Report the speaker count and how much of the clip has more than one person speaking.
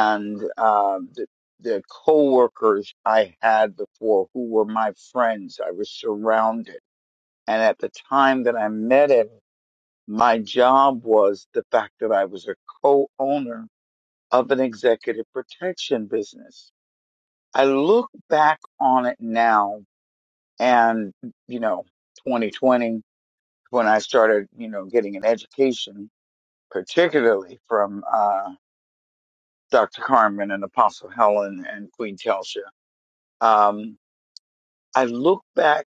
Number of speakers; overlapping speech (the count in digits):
1, no overlap